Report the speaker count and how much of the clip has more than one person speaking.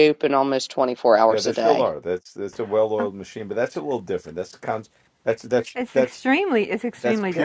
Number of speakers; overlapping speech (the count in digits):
3, about 17%